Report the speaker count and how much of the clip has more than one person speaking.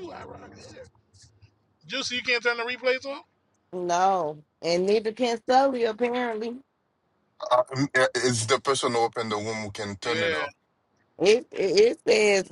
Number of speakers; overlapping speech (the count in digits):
3, about 4%